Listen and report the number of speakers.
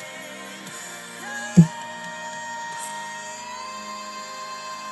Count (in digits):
0